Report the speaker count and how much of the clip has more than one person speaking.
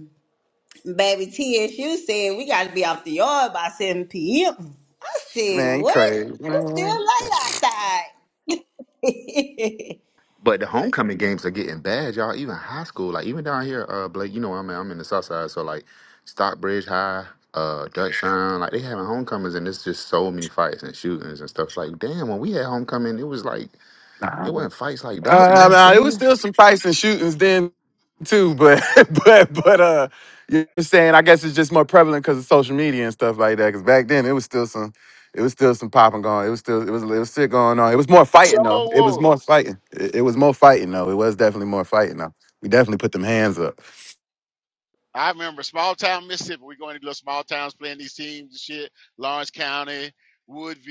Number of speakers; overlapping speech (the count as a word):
four, about 7%